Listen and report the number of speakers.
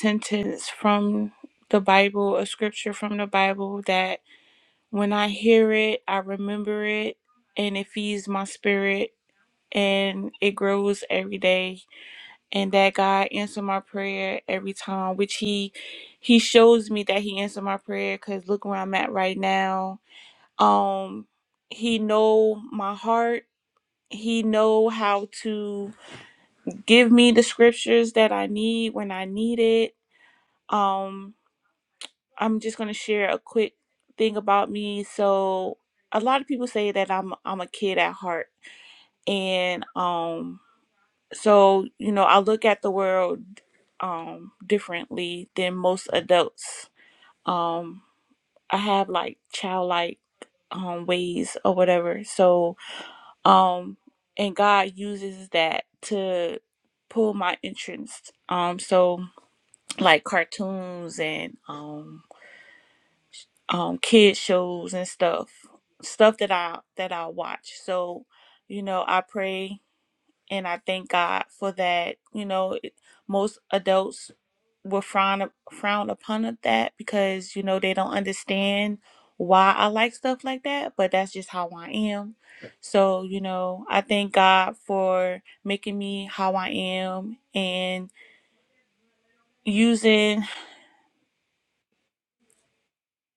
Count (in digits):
1